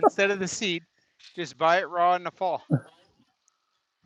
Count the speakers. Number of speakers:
one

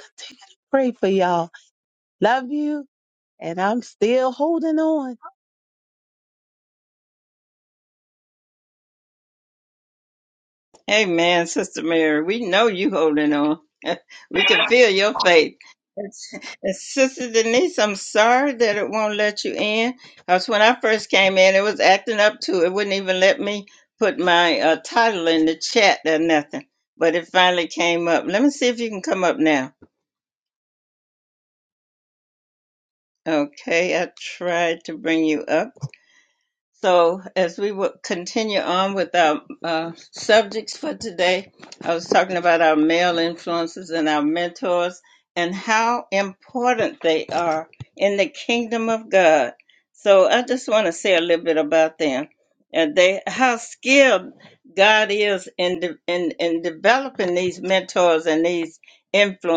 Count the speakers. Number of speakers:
two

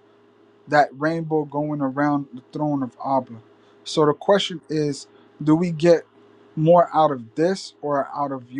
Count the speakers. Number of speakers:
one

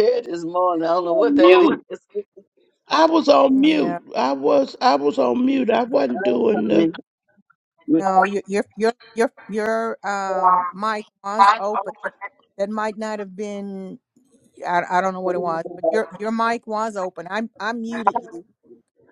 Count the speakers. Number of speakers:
three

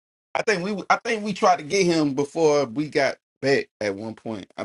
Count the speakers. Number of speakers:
one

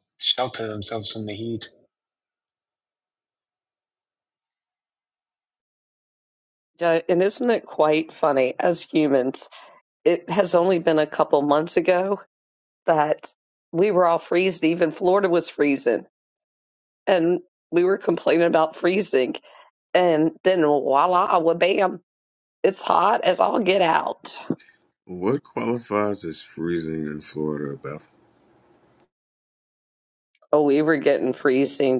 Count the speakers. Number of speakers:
three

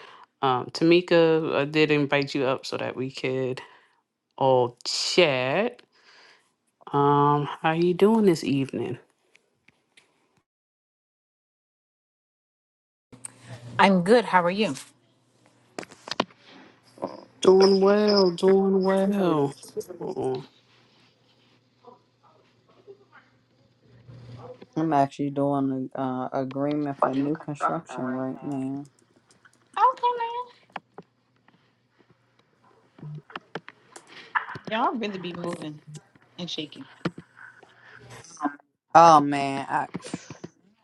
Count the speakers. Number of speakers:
three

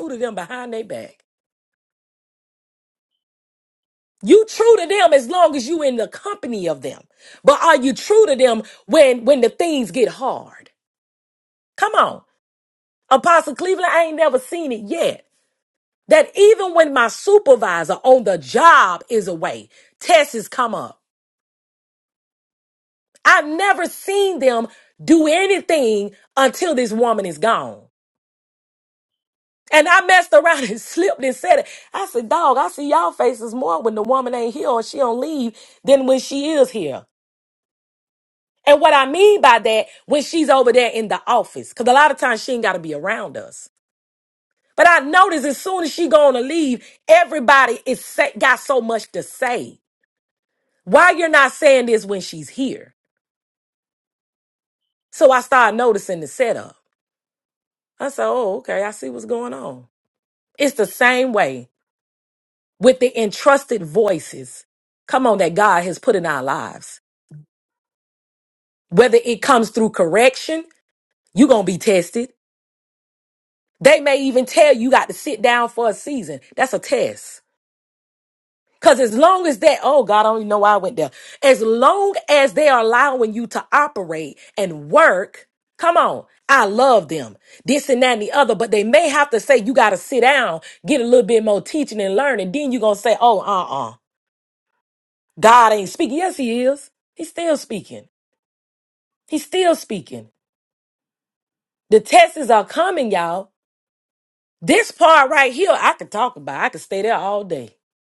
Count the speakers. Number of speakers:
one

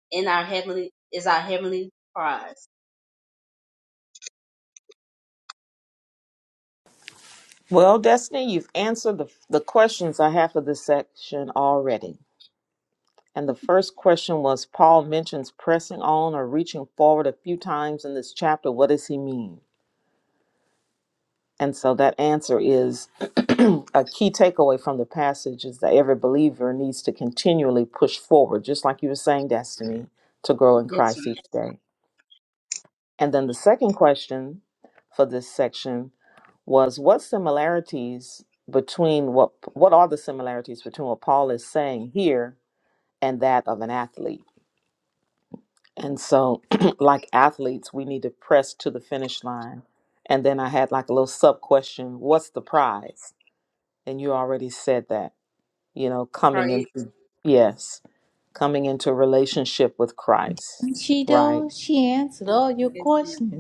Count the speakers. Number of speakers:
three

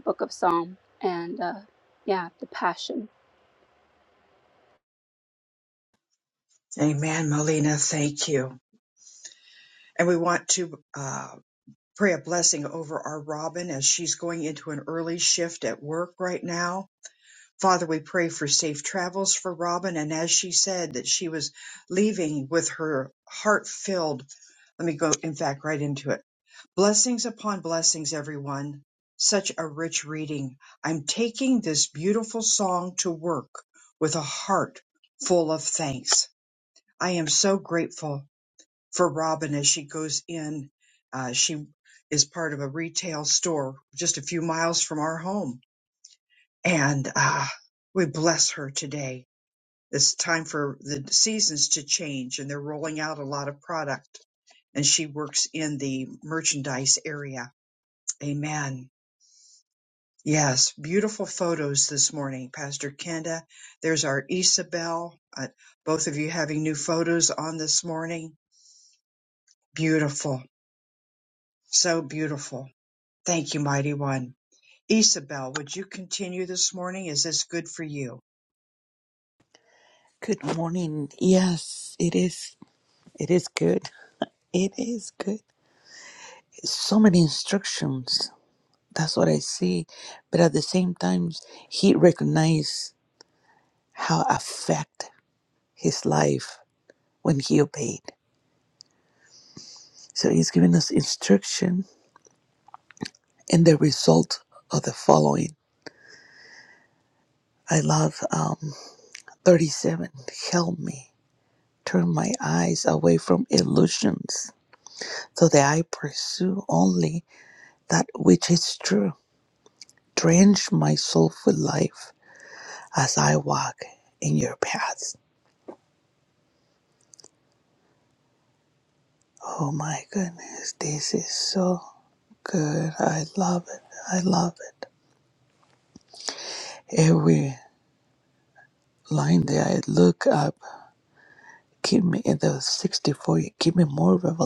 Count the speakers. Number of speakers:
three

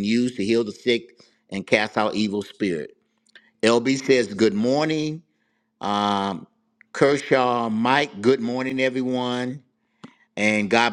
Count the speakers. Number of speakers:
one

